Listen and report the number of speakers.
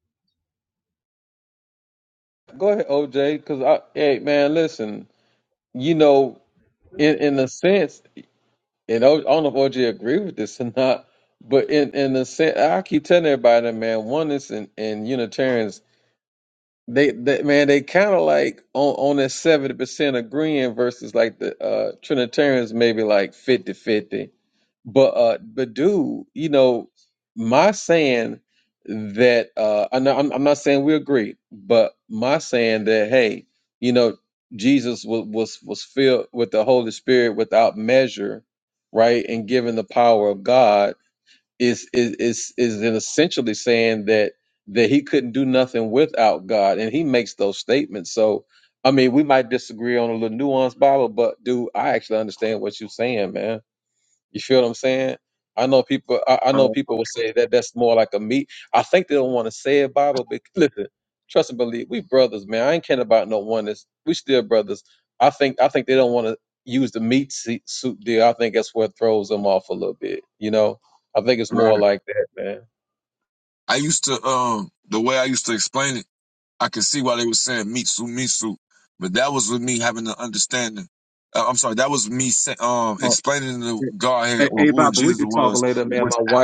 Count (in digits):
2